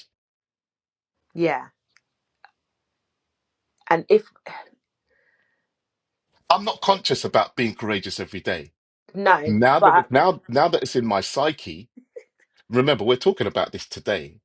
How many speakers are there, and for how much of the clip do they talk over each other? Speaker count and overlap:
2, about 4%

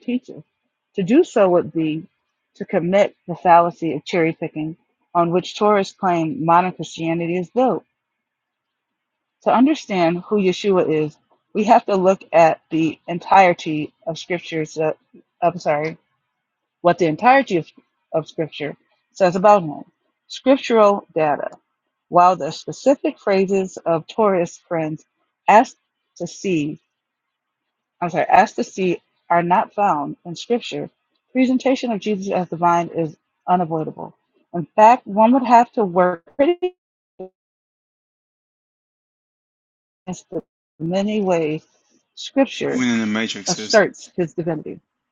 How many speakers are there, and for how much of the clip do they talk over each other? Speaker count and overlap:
2, about 1%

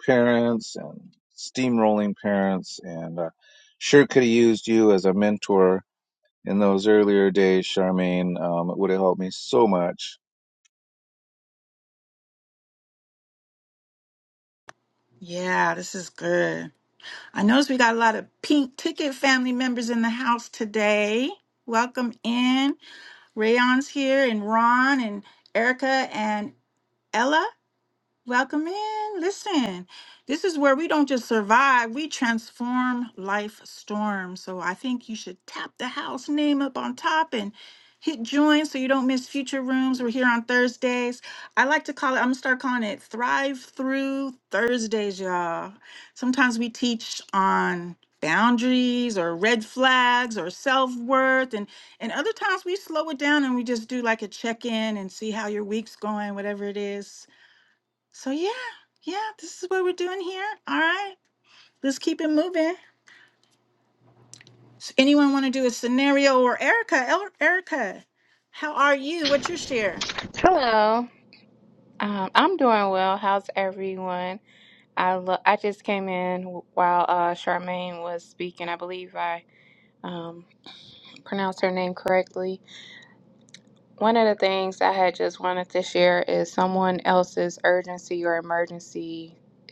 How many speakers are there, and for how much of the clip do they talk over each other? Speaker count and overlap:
3, no overlap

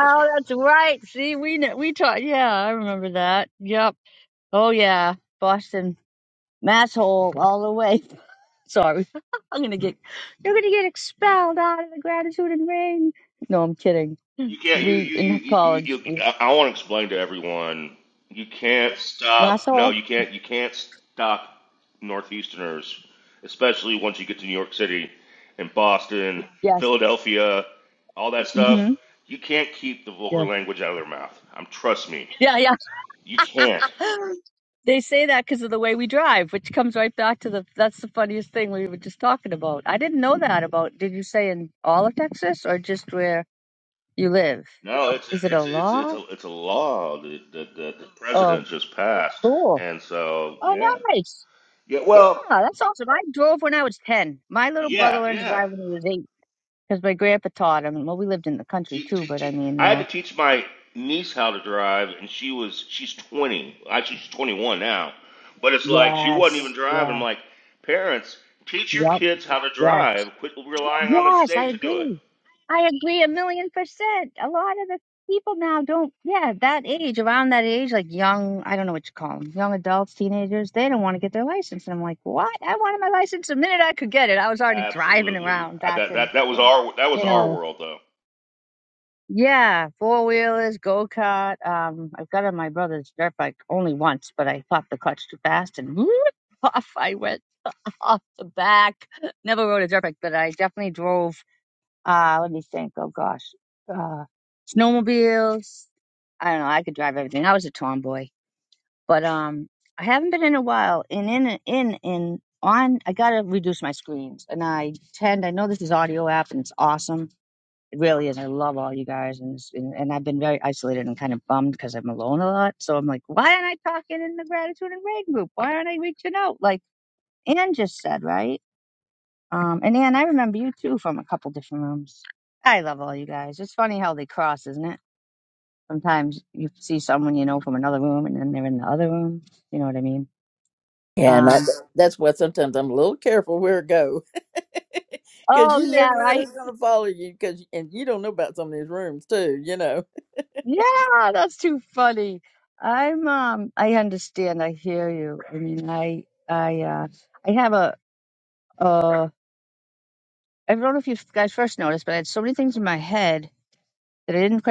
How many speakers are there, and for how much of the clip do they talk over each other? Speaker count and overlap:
3, about 8%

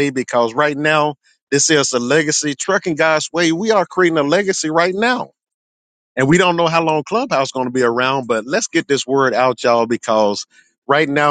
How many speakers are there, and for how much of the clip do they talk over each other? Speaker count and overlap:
1, no overlap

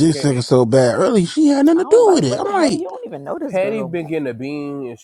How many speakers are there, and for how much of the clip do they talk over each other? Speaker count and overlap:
3, about 35%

